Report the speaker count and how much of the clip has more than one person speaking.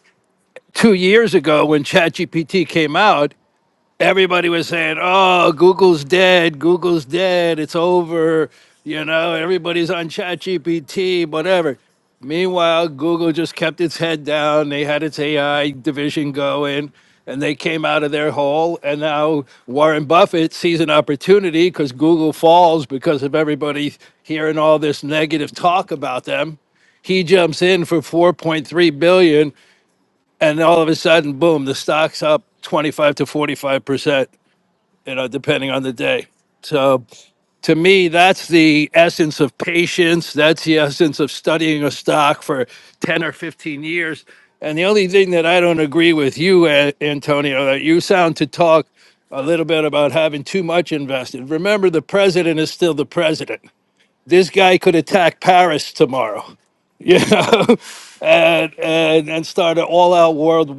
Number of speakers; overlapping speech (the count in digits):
1, no overlap